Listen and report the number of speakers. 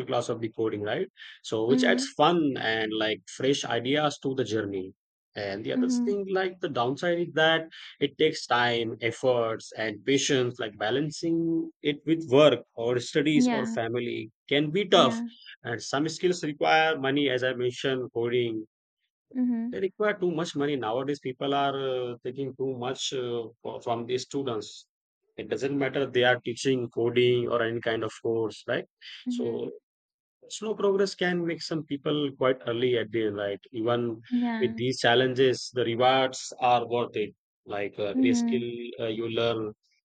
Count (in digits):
2